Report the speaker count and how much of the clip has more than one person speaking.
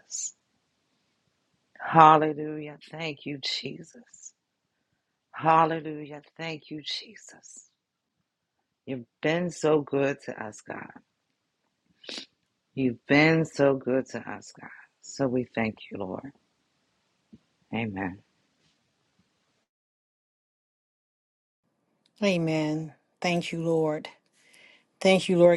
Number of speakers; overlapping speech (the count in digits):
2, no overlap